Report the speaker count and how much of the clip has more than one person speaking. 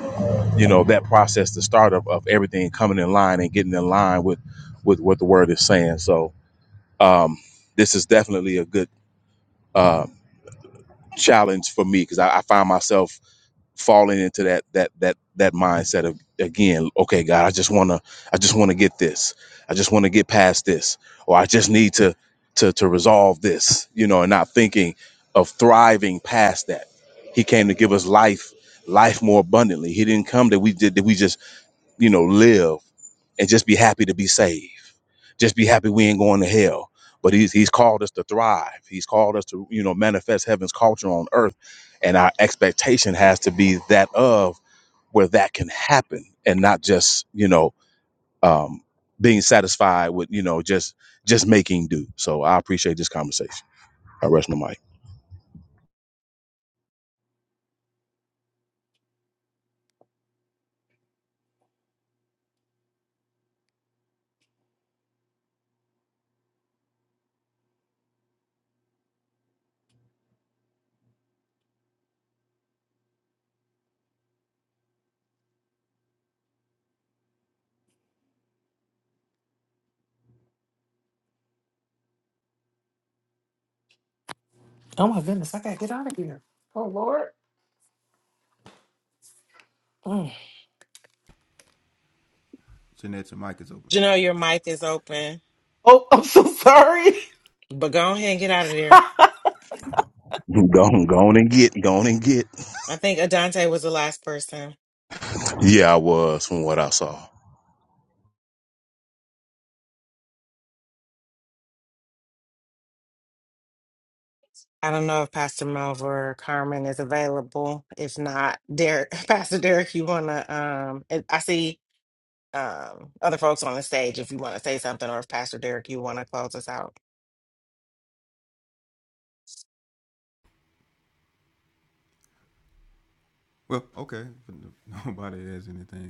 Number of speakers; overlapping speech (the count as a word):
four, under 1%